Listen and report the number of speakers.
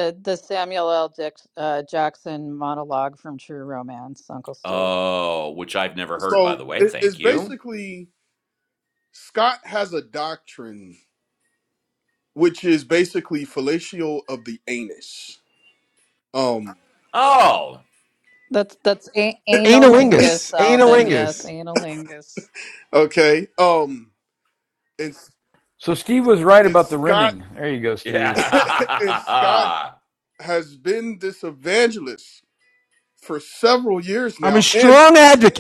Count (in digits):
5